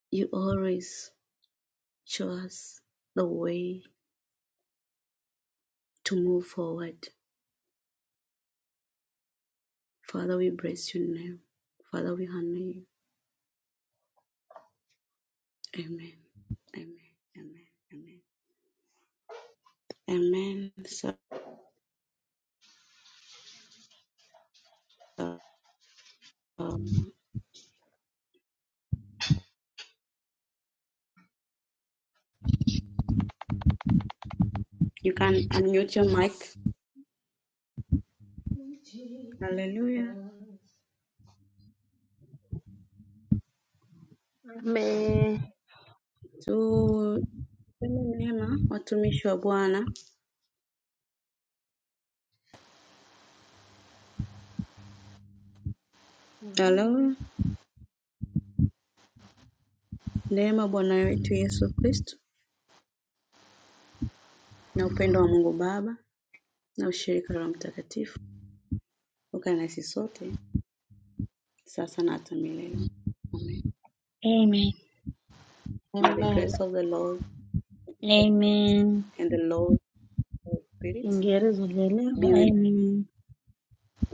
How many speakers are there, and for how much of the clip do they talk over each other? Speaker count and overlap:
3, about 1%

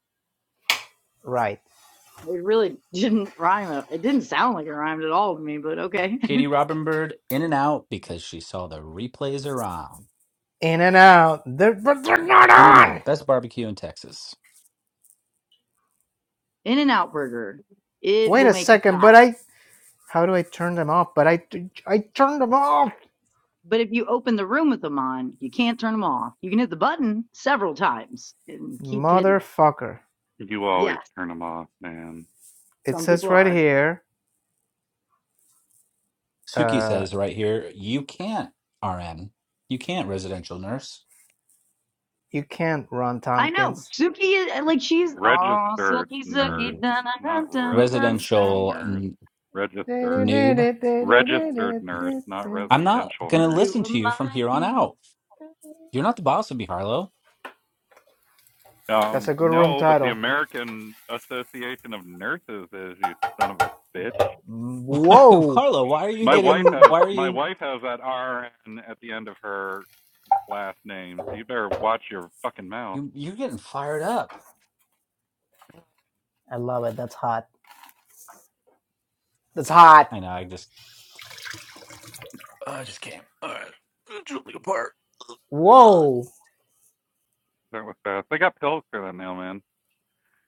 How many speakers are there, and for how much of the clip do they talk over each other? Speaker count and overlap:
4, about 14%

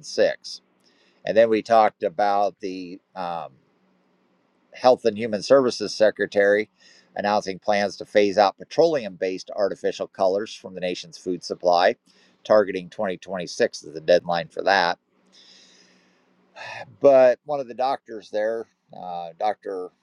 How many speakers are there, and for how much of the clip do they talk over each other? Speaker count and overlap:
1, no overlap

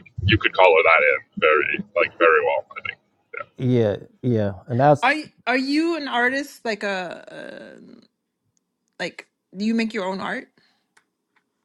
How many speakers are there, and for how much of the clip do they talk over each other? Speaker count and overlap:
3, no overlap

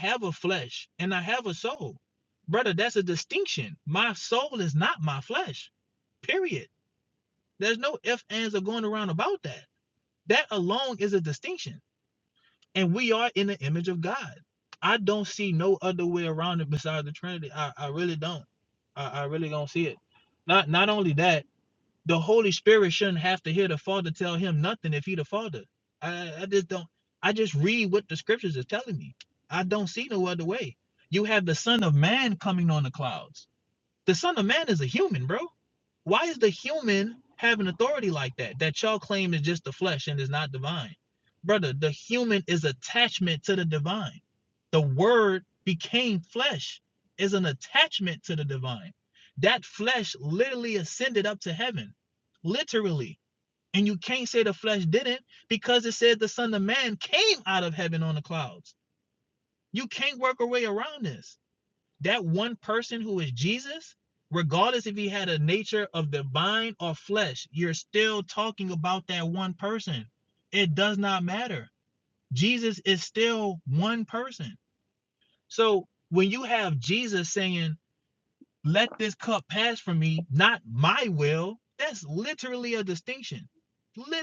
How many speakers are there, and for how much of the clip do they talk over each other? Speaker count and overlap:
1, no overlap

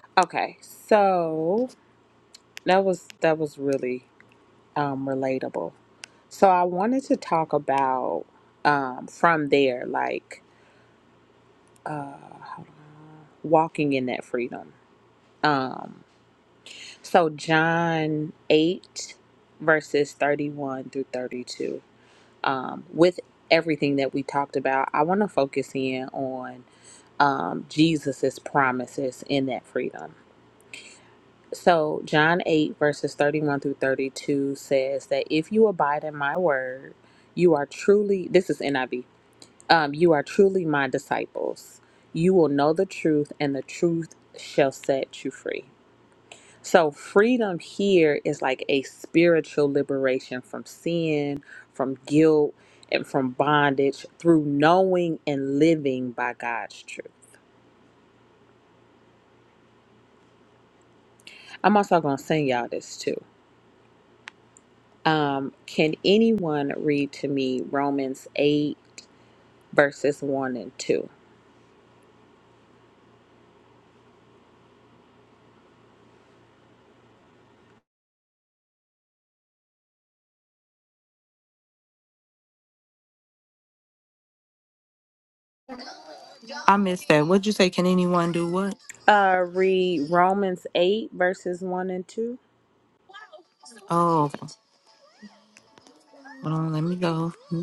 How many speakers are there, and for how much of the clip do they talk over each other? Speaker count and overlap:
2, no overlap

